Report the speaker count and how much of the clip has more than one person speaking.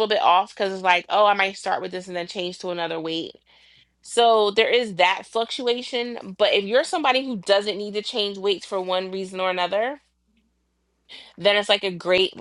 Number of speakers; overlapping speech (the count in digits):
1, no overlap